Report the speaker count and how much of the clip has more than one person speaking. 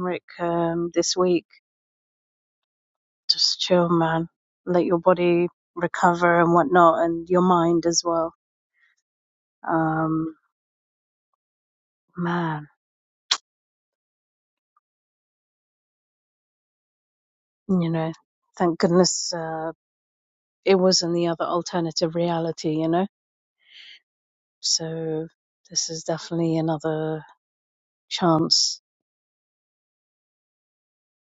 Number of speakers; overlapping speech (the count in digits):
1, no overlap